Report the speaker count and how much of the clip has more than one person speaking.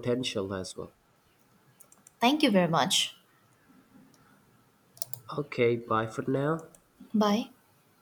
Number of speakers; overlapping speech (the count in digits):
2, no overlap